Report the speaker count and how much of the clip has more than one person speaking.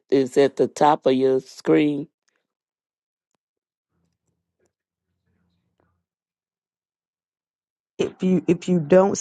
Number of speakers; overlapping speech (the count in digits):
2, no overlap